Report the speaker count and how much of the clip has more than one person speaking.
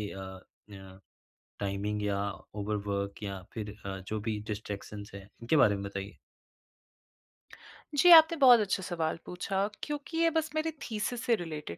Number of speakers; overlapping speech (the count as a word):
two, no overlap